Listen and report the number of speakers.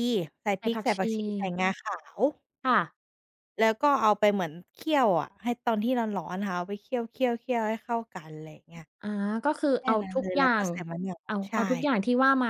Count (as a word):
two